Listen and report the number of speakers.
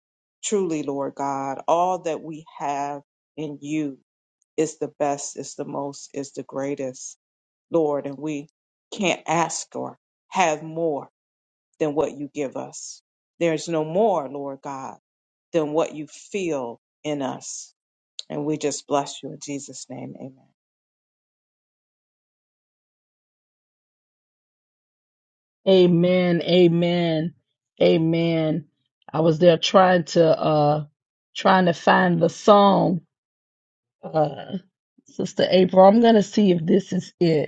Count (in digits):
2